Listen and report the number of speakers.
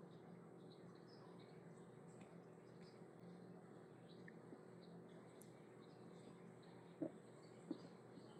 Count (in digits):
0